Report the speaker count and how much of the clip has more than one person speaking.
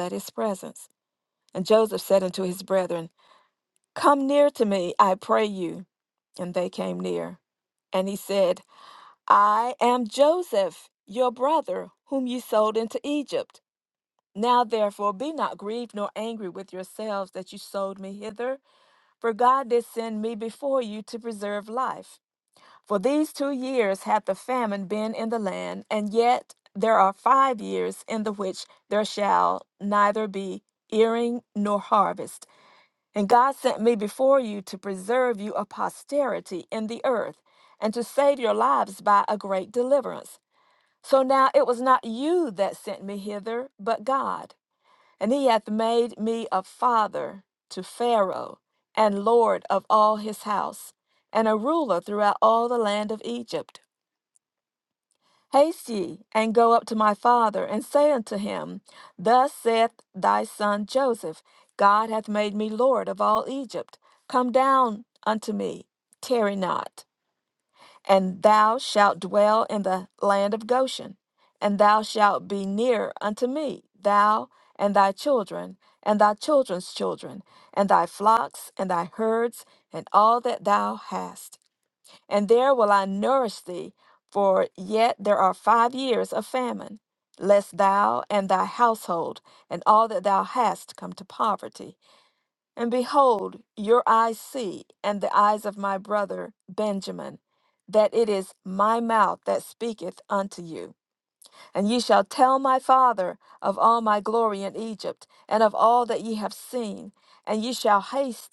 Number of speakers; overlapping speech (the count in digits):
1, no overlap